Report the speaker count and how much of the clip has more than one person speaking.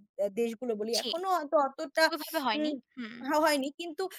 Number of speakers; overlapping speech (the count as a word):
two, about 10%